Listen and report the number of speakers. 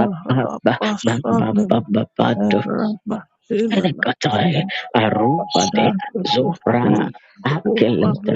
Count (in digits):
2